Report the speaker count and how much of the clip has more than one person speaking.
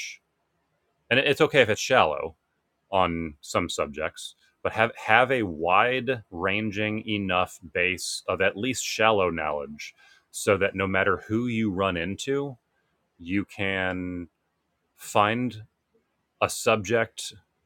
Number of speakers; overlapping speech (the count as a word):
one, no overlap